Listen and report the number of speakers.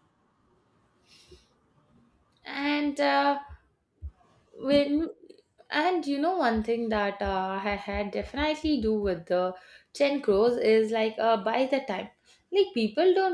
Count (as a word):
one